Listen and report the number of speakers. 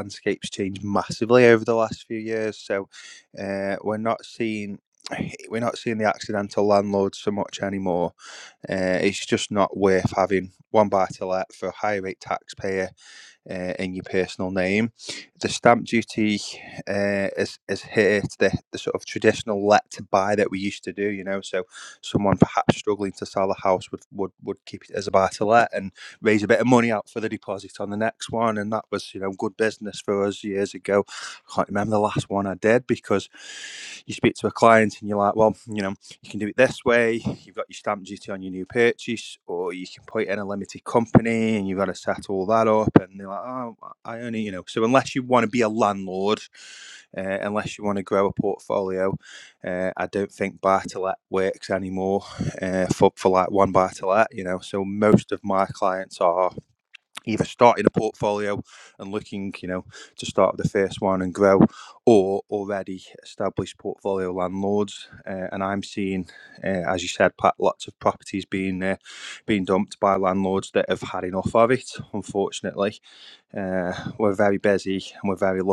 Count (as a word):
one